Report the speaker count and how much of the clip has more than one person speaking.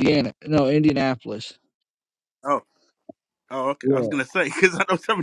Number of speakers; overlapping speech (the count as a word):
two, about 7%